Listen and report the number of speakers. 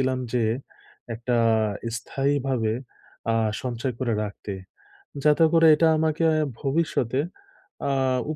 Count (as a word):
one